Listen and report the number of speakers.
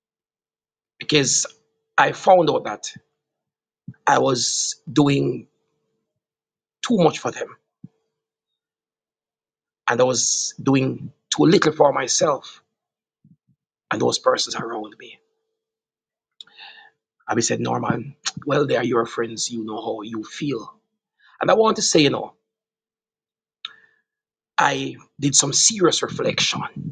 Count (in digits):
1